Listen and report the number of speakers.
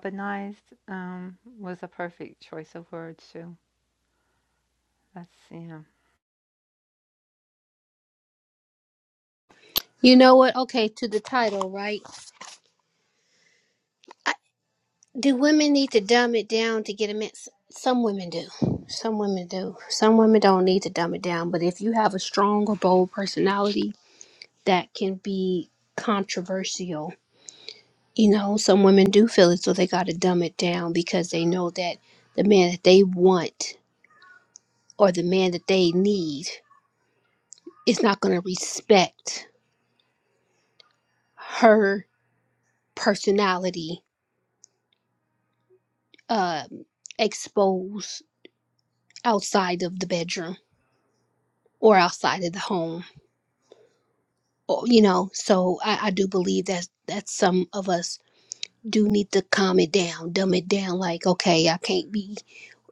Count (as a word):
two